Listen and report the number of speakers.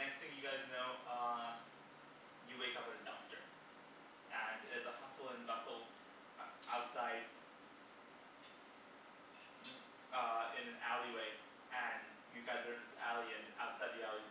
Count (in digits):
1